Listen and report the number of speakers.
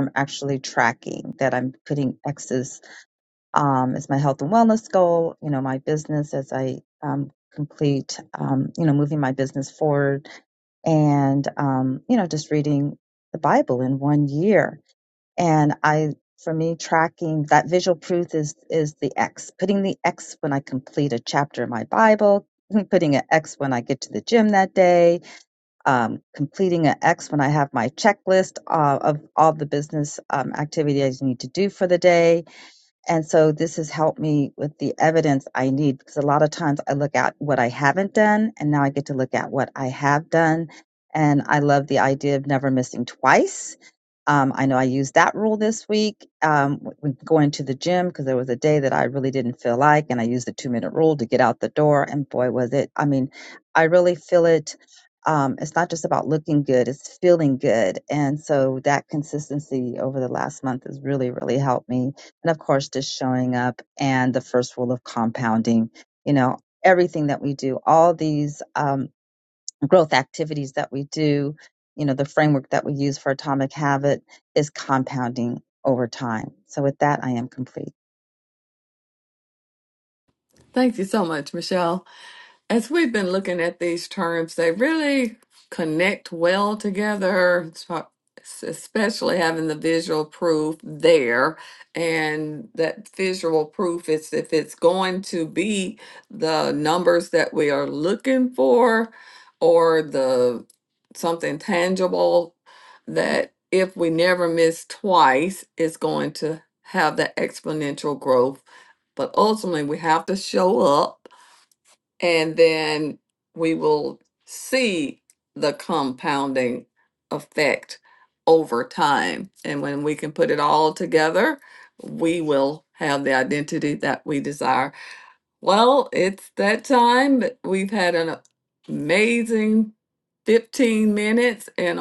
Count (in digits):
2